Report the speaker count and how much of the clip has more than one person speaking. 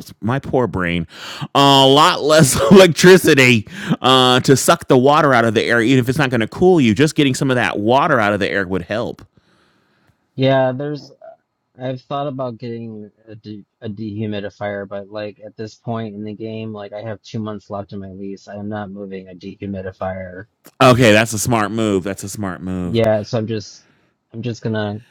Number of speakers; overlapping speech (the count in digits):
2, under 1%